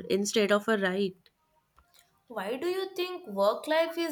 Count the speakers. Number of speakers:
2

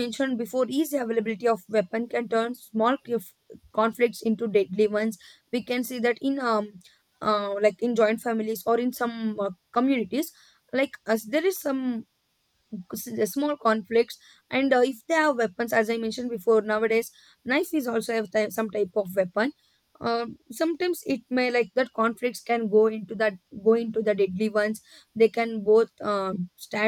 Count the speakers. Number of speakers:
1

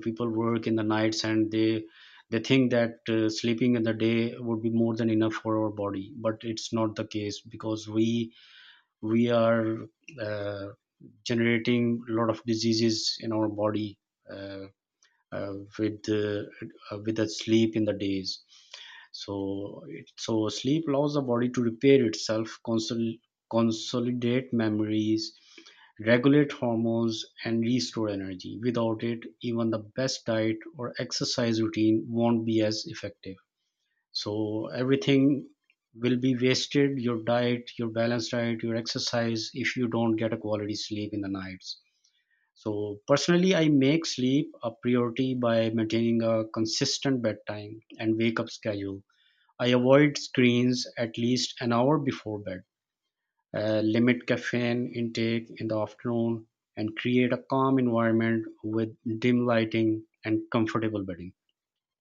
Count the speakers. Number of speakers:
1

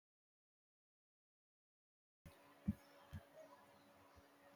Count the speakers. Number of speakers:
0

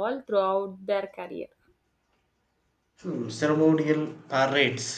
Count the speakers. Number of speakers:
2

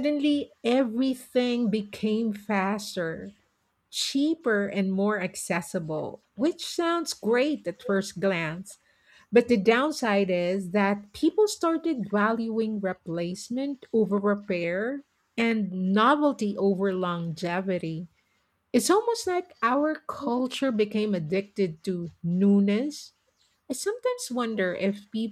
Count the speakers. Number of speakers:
1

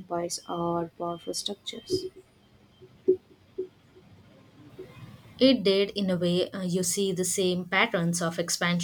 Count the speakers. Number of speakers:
2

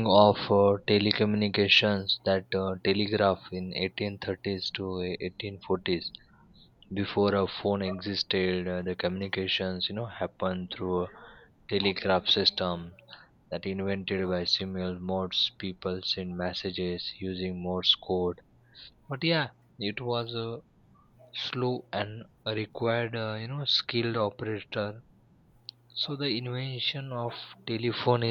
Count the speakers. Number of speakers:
1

